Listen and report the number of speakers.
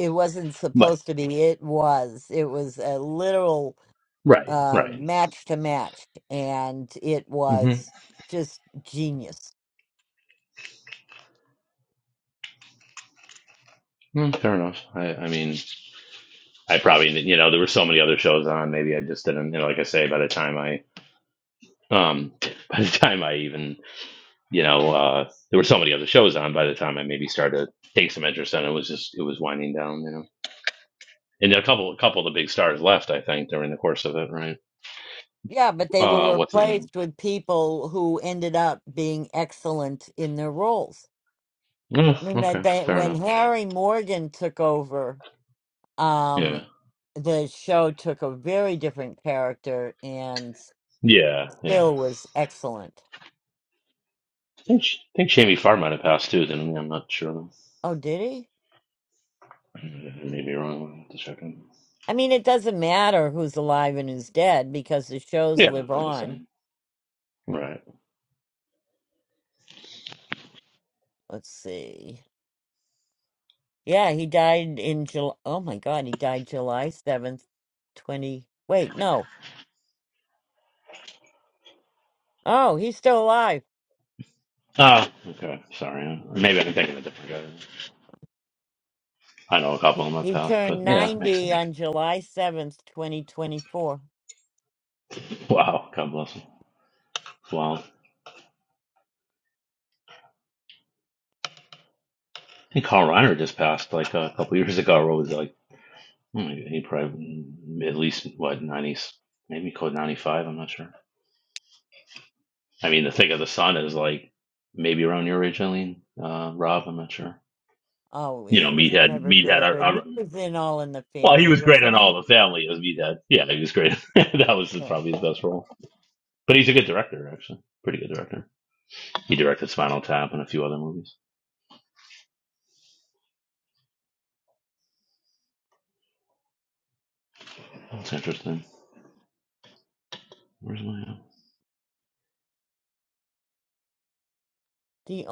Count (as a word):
two